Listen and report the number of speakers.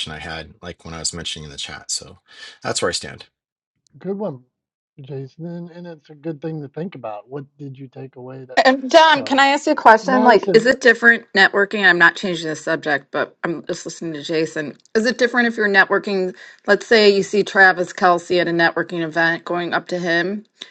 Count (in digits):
3